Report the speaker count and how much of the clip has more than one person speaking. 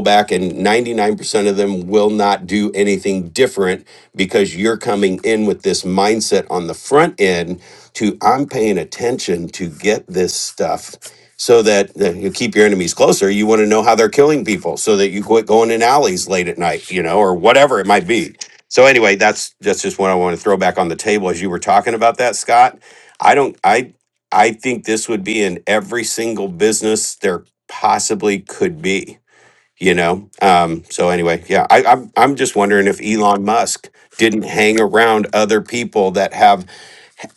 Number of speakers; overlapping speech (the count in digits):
1, no overlap